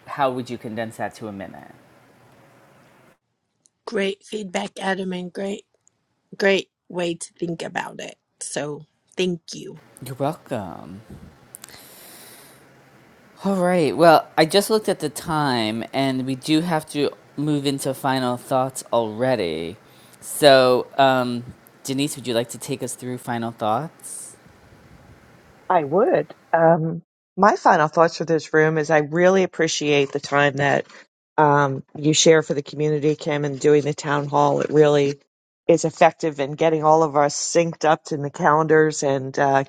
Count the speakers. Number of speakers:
3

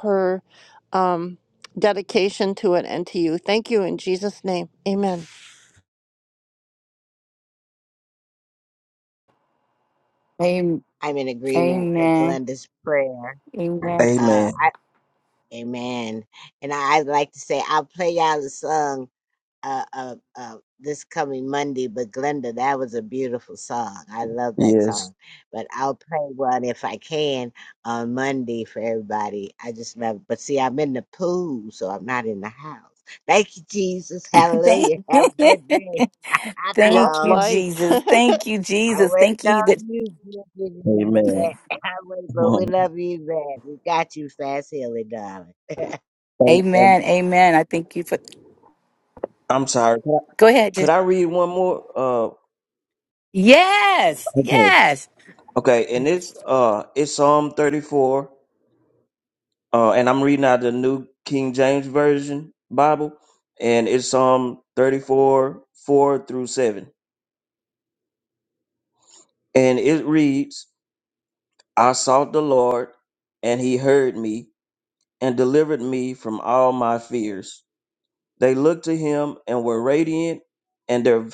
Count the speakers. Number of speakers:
4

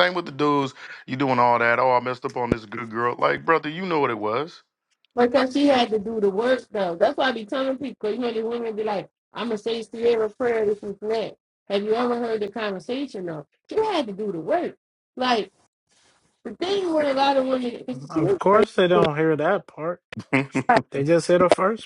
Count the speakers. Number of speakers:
3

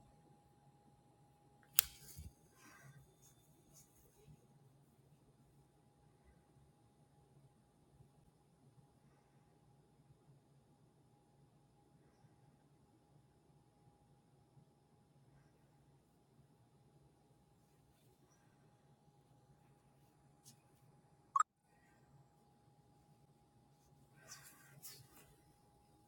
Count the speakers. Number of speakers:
0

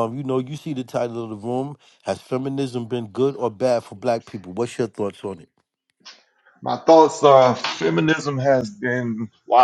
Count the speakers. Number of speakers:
2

